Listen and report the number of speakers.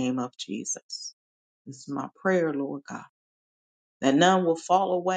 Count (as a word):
one